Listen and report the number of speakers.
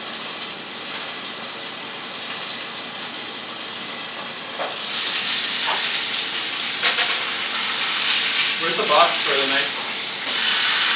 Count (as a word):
one